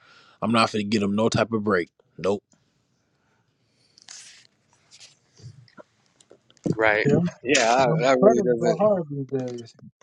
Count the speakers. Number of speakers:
three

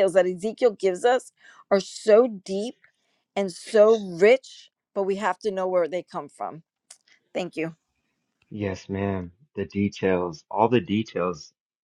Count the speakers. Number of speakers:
two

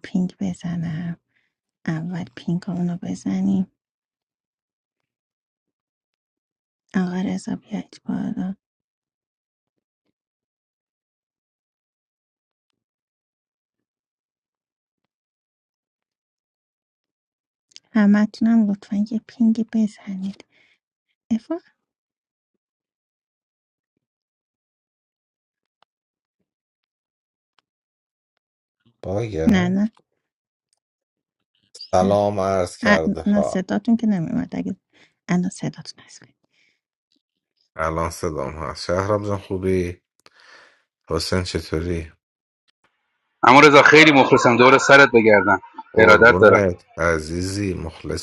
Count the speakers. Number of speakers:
three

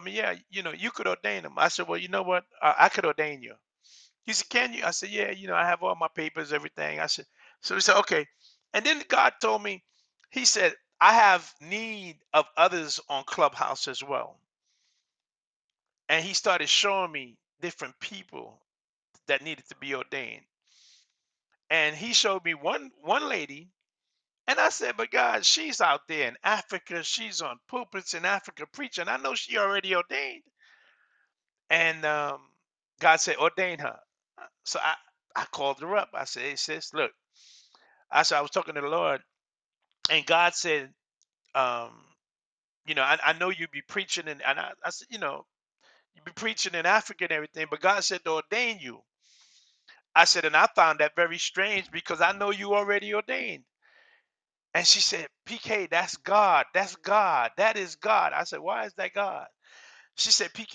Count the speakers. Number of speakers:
one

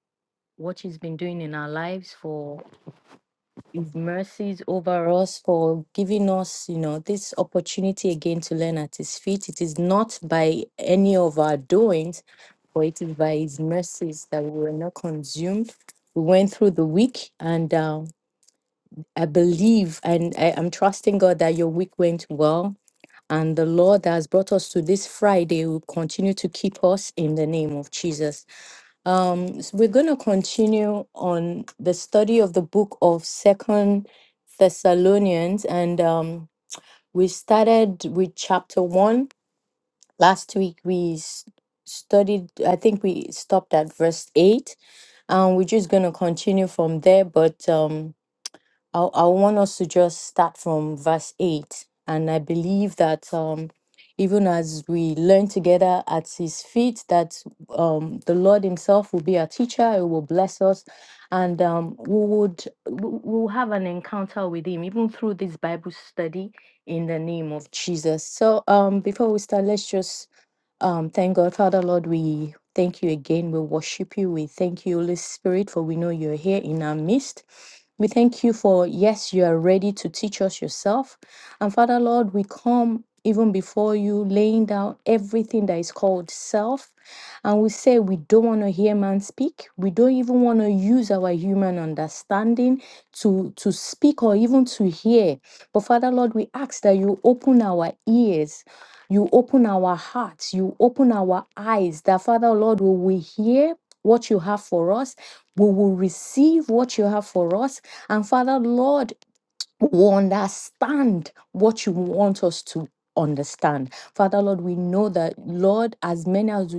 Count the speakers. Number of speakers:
one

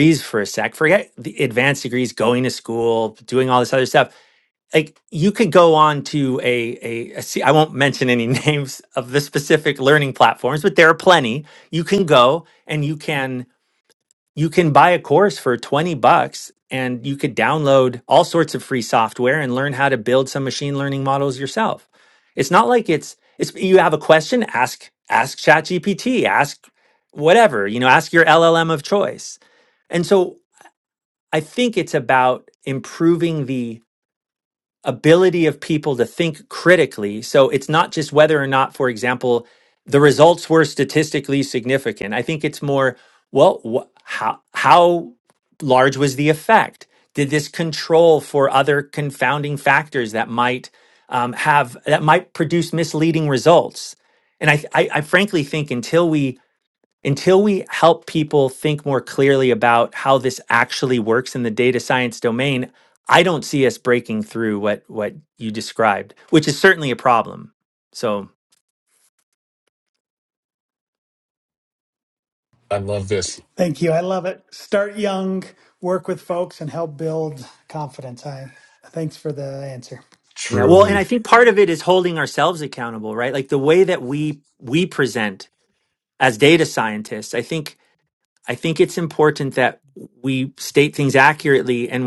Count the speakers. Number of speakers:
three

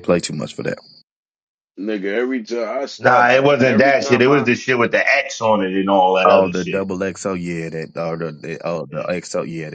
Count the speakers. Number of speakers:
three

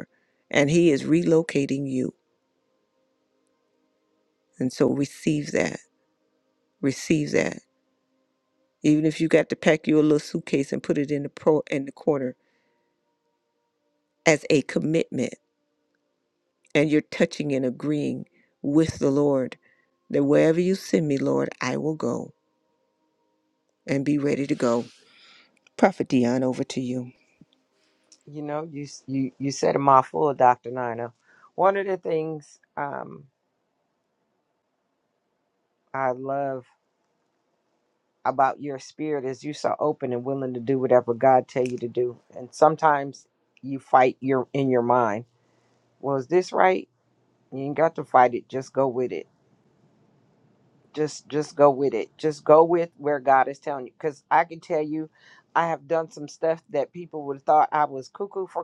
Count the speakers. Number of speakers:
two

